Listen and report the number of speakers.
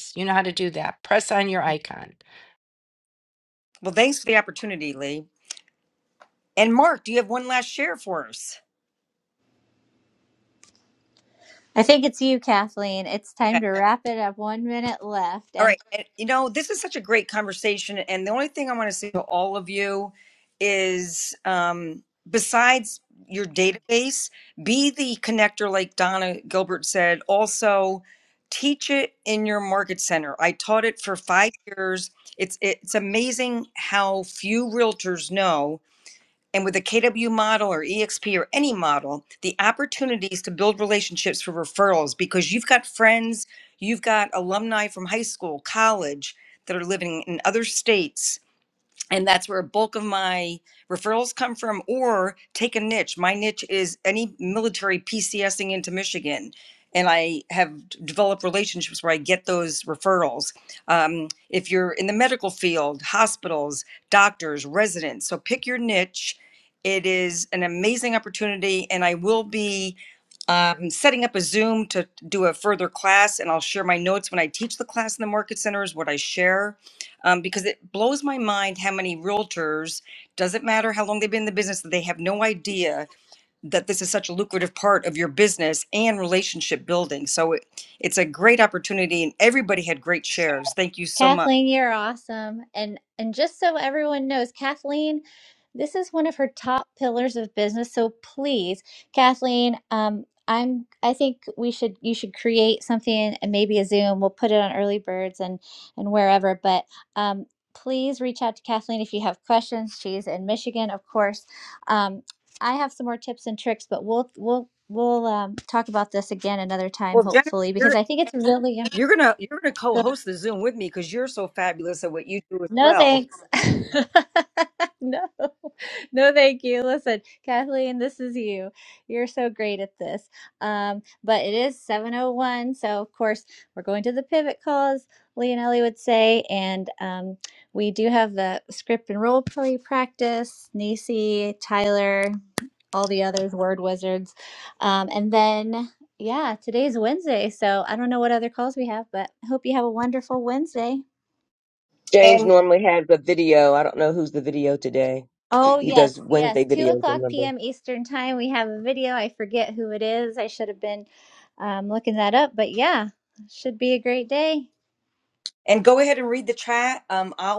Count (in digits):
4